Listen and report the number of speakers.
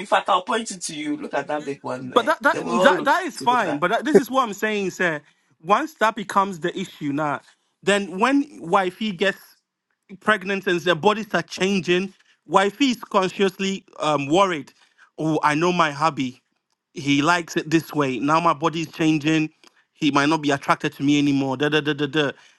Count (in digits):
2